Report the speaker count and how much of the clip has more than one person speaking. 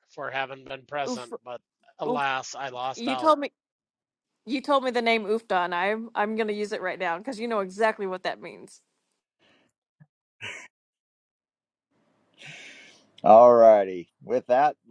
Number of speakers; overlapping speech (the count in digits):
3, about 6%